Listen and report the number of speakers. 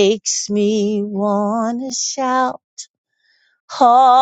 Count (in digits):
1